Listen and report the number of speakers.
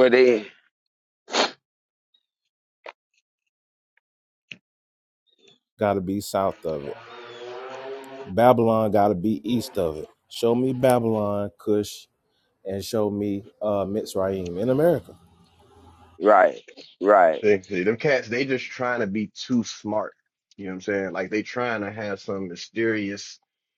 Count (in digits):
3